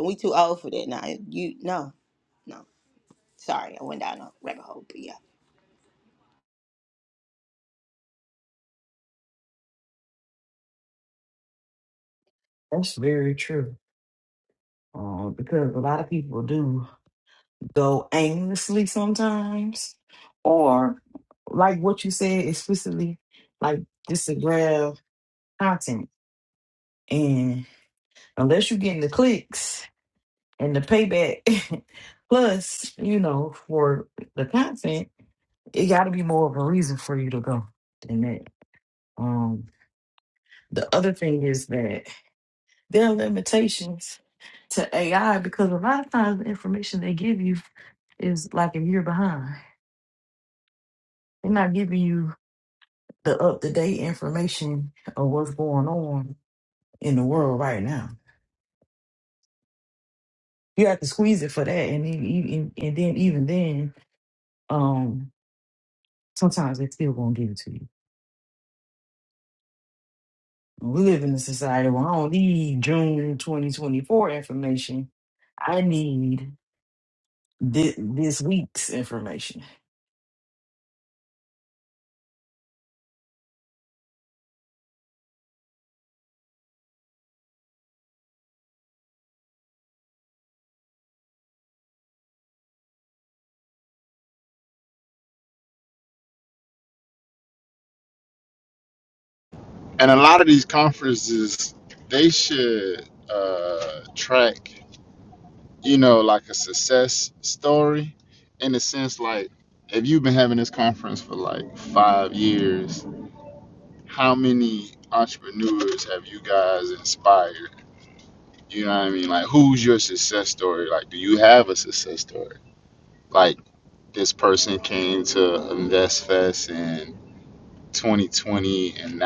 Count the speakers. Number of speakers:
three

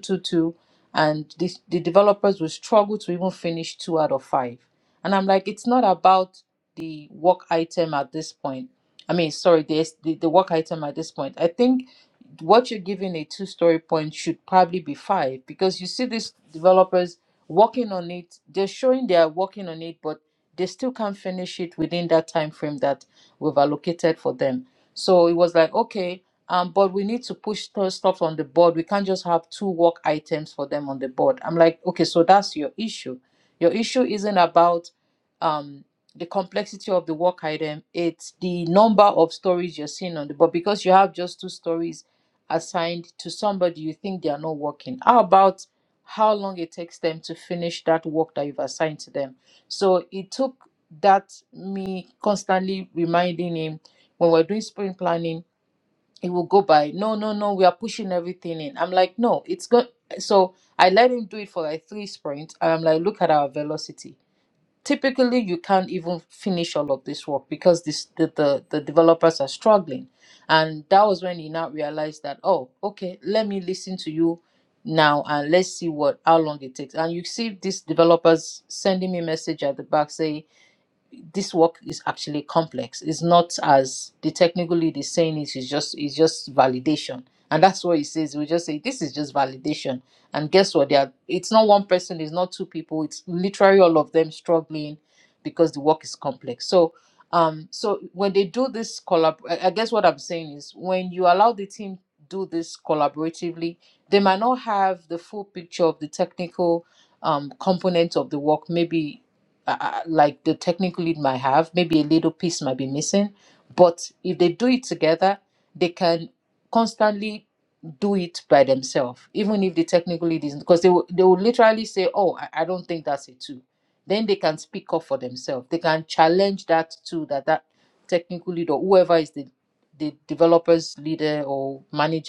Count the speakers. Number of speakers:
one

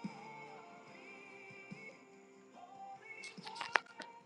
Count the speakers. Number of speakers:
zero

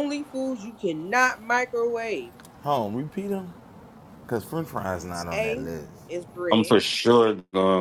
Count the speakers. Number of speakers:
three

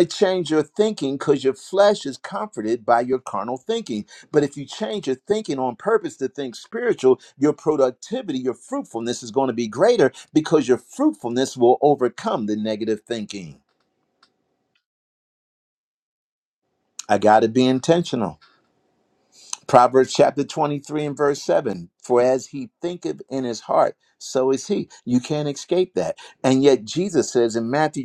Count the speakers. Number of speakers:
one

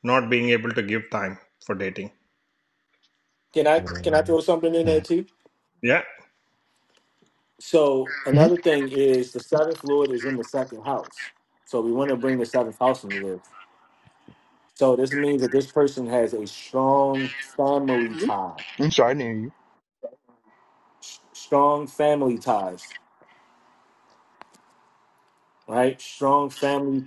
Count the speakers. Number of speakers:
three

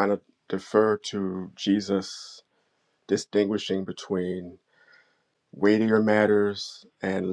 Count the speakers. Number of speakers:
one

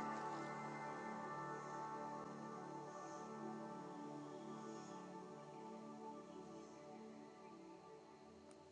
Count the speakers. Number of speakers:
zero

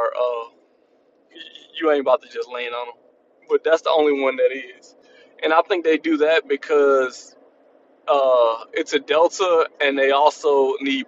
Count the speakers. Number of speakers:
one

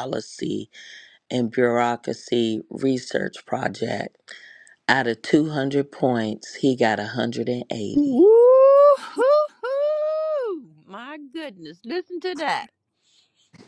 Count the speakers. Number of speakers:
two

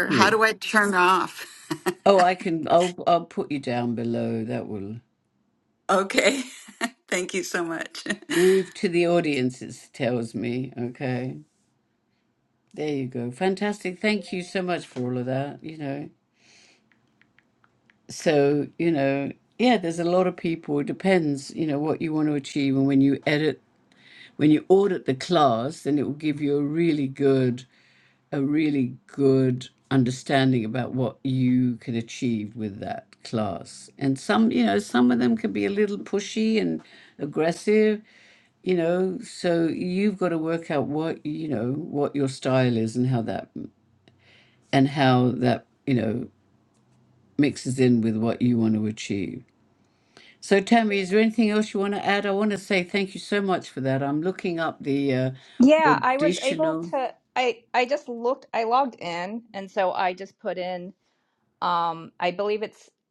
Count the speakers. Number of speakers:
three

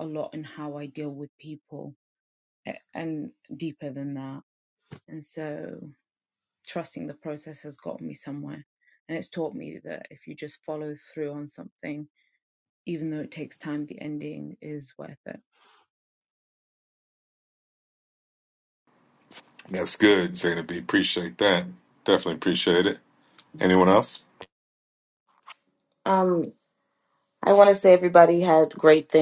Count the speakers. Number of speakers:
three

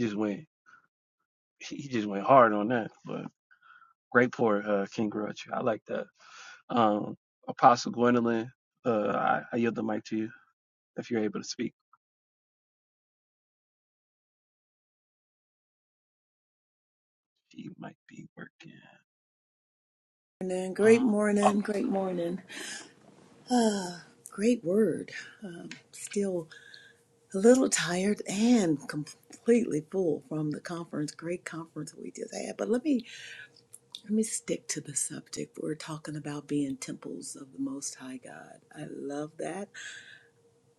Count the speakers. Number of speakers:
two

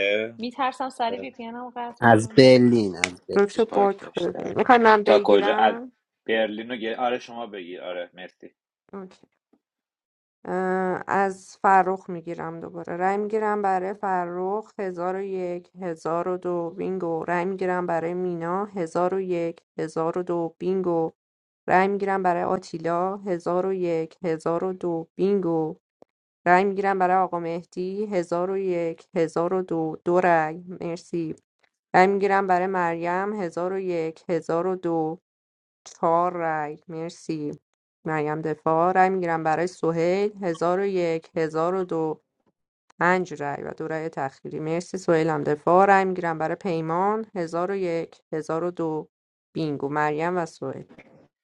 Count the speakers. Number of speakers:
four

